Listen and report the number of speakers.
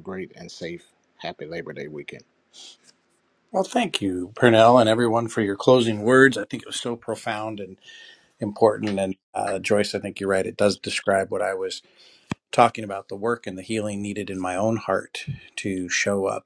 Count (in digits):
2